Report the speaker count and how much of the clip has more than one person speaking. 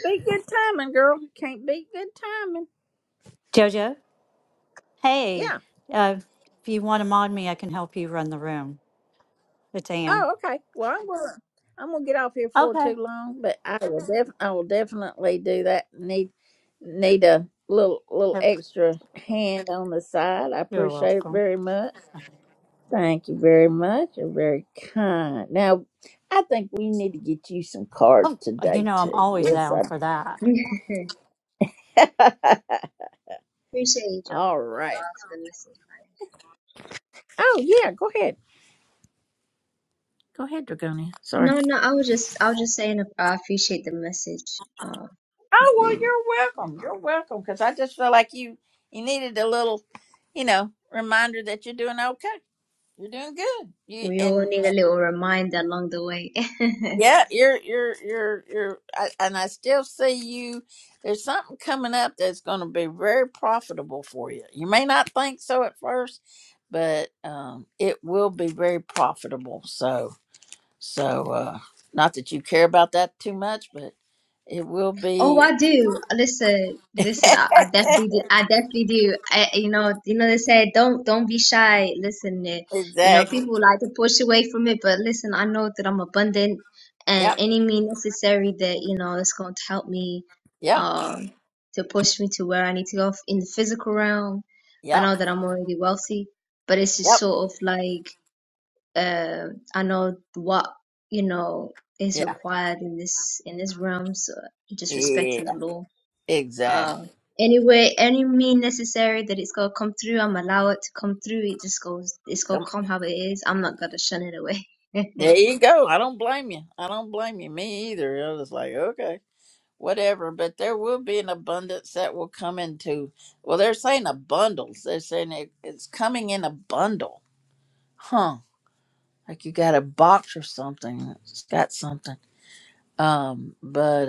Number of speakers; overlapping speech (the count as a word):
three, about 5%